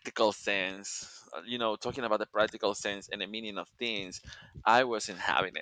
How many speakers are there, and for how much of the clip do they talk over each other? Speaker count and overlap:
1, no overlap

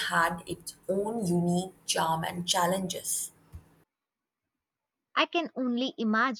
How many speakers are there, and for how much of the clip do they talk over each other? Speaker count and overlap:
2, no overlap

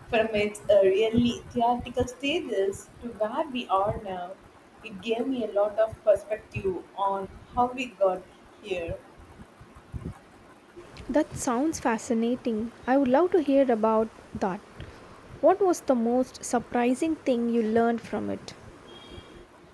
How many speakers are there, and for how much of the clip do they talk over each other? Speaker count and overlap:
2, no overlap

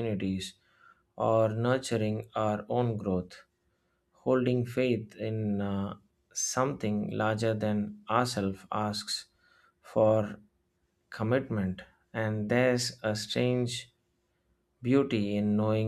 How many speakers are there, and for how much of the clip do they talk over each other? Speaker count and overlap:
1, no overlap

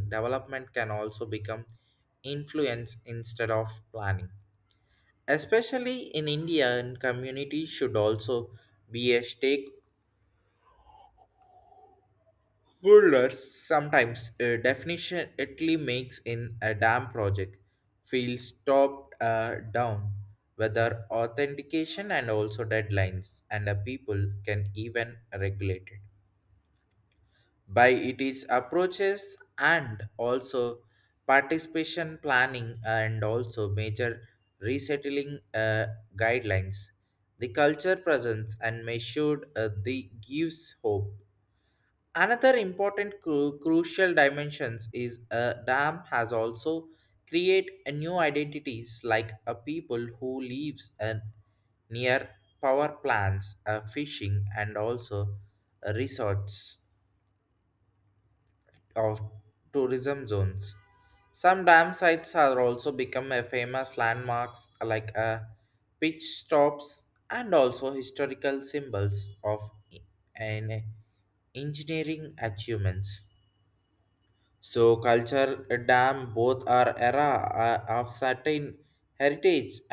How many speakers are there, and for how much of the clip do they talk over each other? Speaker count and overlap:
1, no overlap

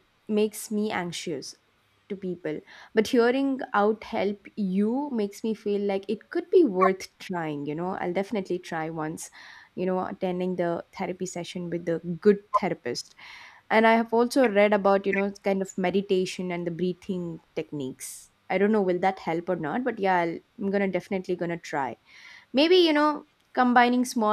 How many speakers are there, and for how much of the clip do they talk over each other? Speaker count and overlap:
1, no overlap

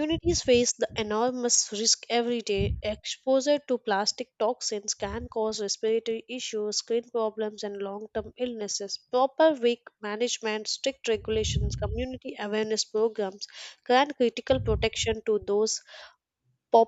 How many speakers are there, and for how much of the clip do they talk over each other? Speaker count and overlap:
1, no overlap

